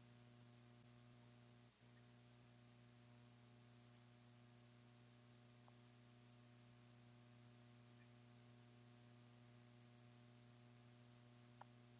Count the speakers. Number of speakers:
0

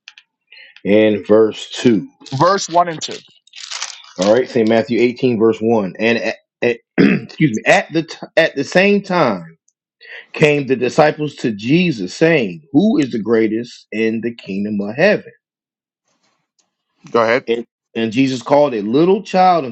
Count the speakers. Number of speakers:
2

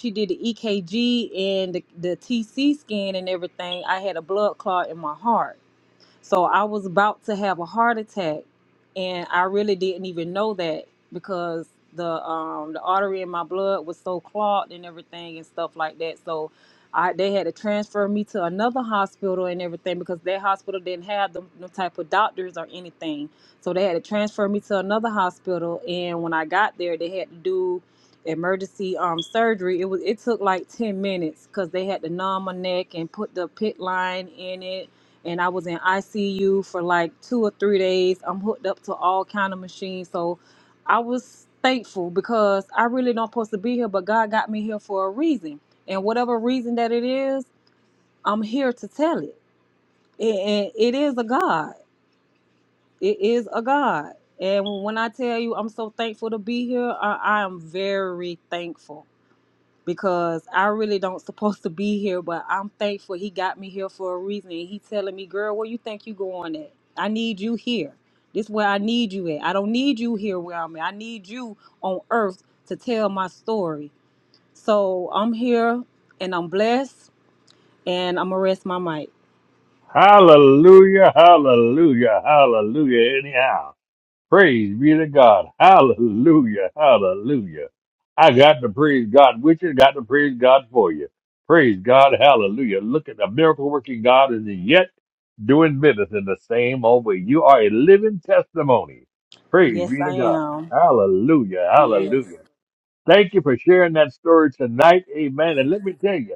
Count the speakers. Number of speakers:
2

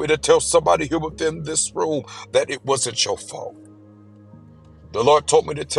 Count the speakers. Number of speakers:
1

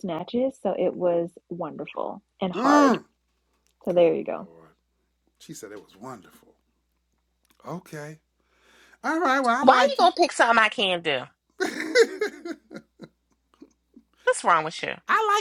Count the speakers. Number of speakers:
3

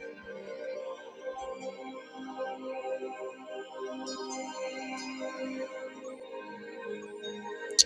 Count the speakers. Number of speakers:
0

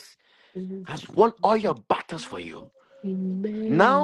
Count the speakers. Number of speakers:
2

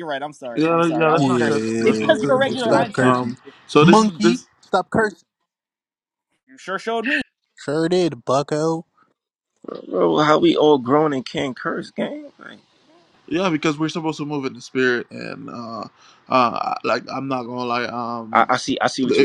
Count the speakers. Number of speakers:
4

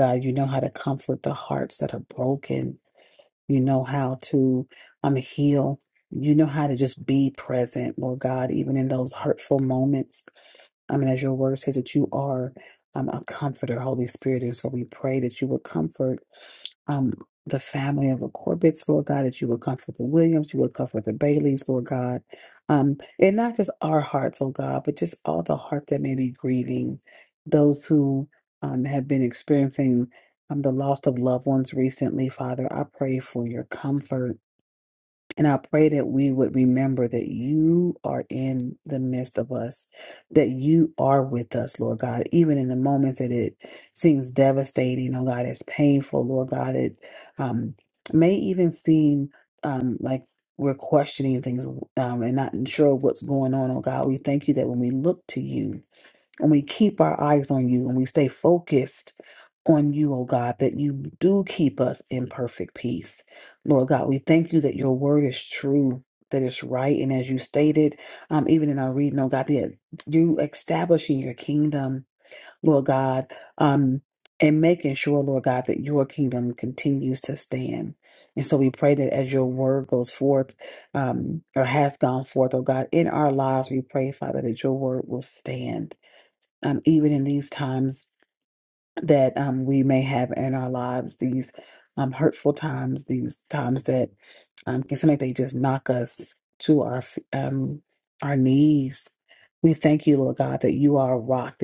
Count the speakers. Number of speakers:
1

